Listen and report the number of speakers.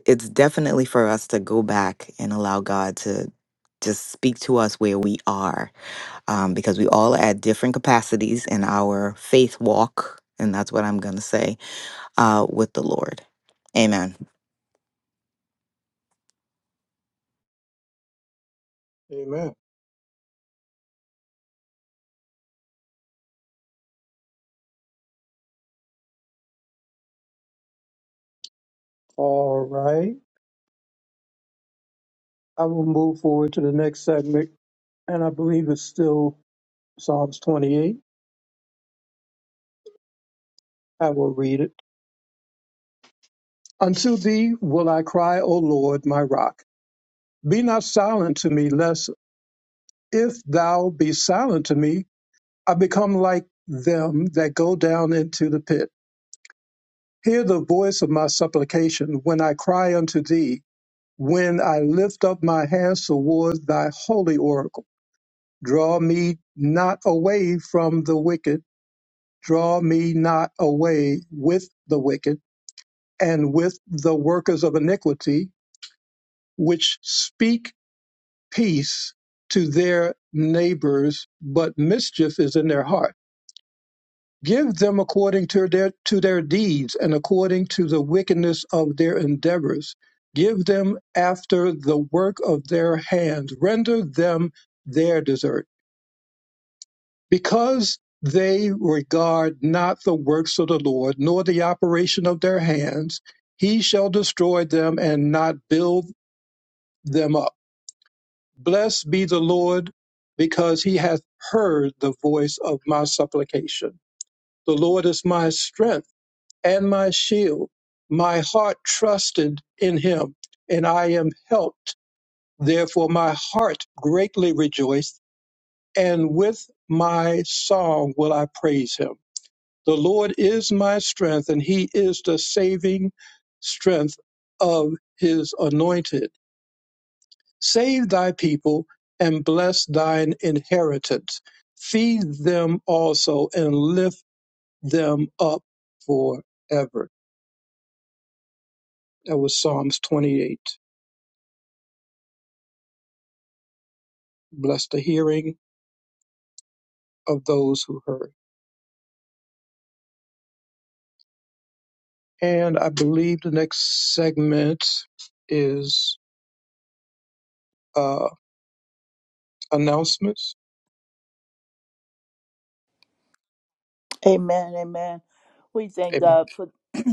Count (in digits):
3